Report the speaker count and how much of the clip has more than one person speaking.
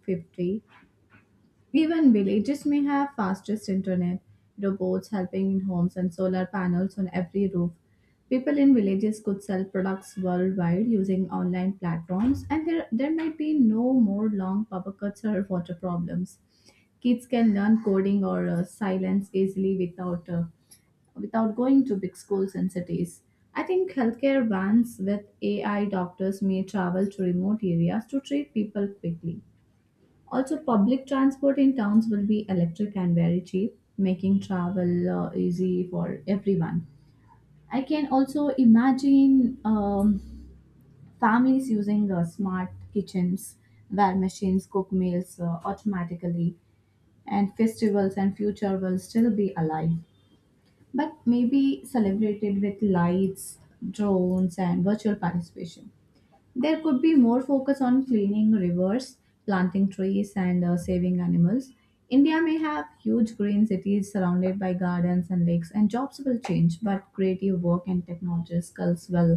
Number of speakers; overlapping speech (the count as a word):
one, no overlap